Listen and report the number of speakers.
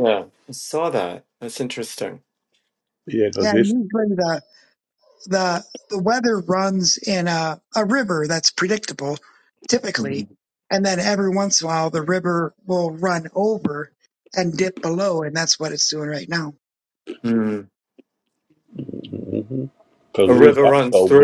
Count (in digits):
3